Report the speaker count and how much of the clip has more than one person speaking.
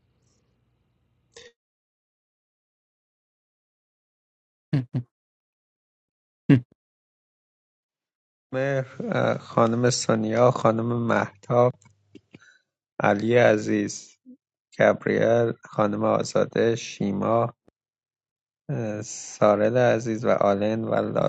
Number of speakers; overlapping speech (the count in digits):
1, no overlap